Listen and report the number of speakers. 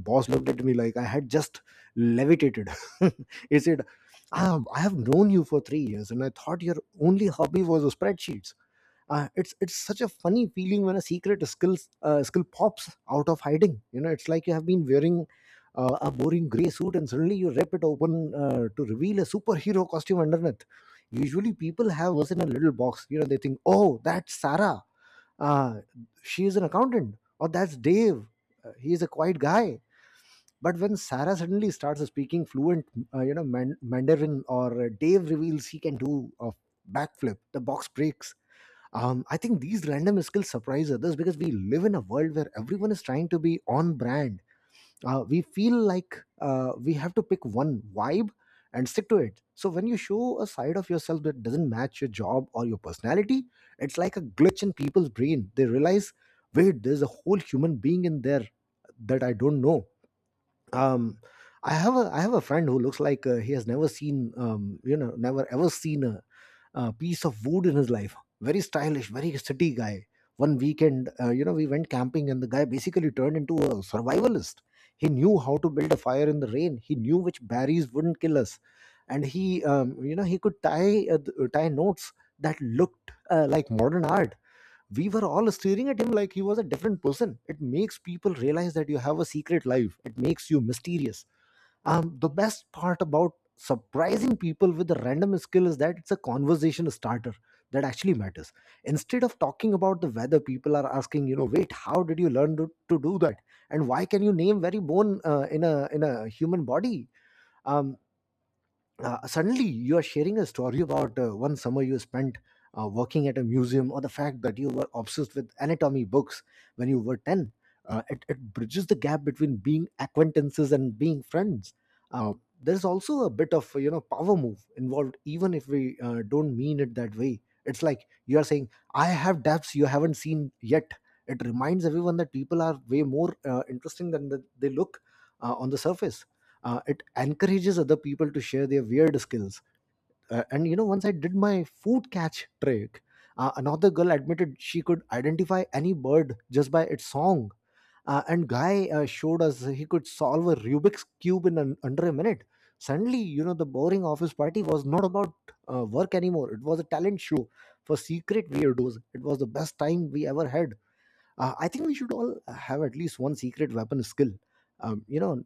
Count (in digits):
1